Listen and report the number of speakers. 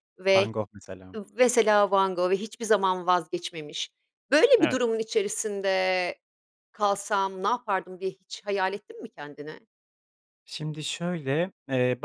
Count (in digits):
2